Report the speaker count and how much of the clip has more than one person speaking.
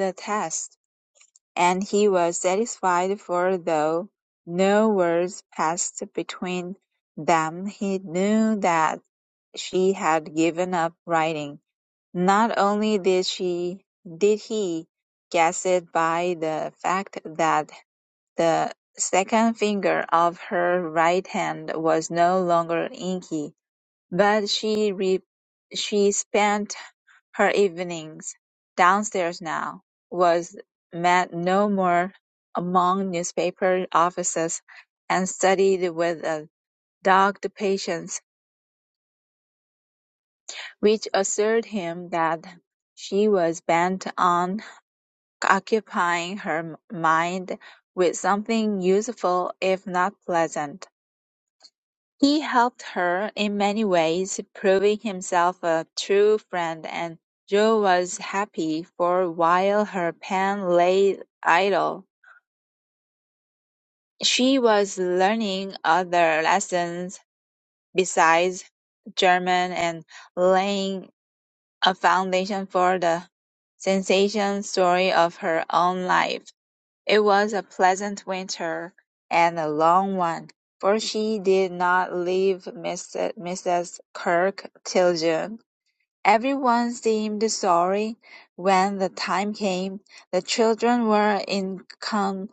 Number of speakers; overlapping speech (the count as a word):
one, no overlap